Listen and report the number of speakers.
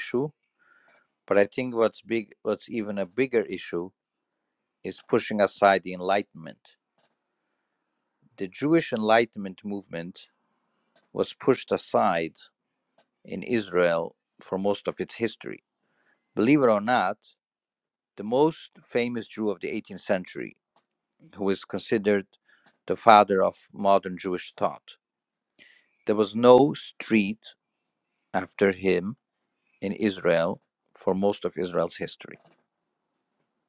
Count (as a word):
one